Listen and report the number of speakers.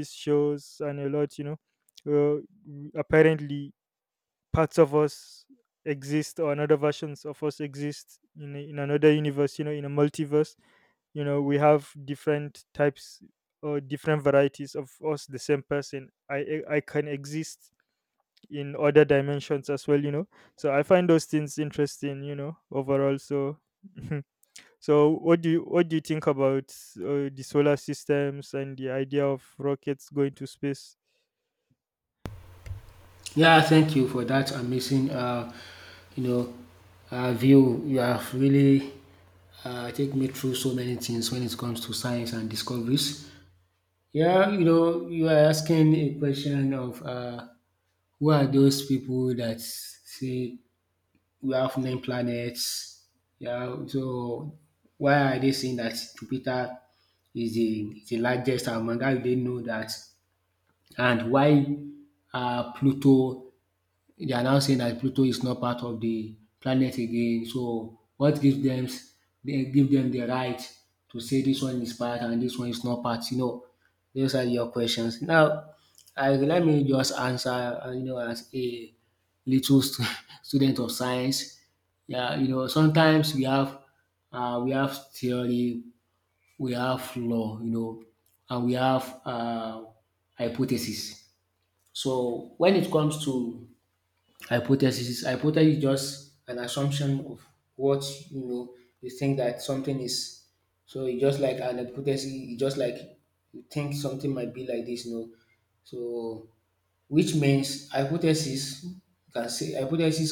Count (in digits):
2